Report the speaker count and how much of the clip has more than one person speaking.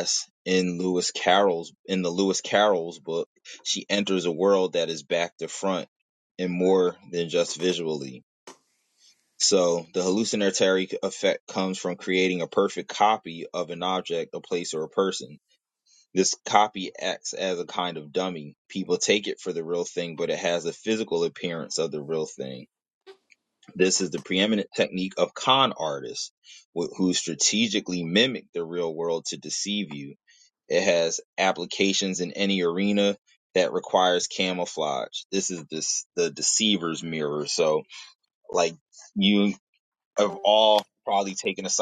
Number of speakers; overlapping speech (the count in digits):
1, no overlap